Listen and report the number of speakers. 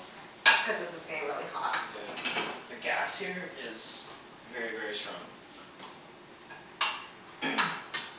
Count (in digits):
2